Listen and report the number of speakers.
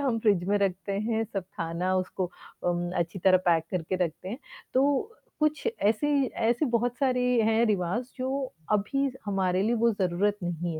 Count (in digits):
1